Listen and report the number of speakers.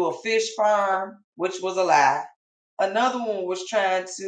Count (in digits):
1